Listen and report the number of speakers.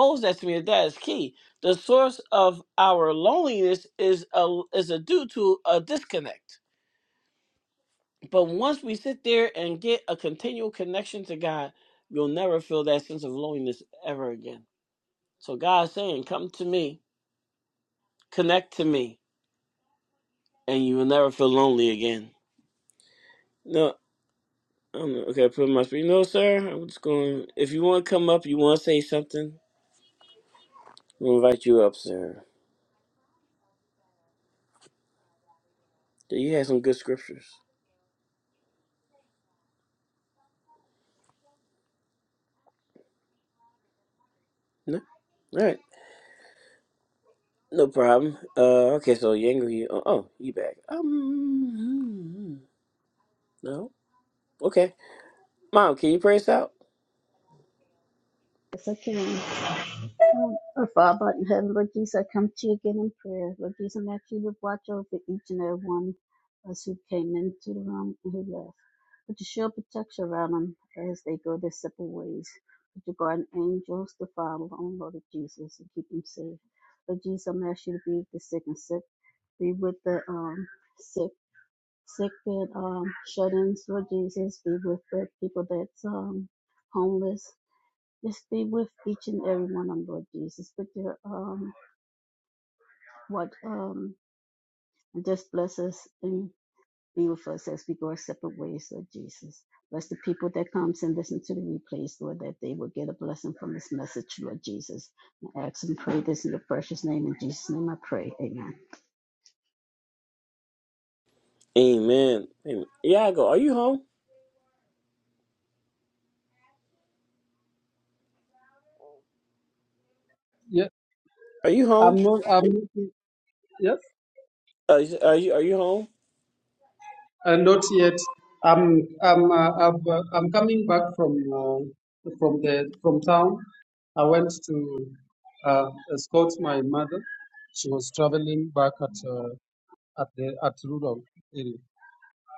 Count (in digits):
3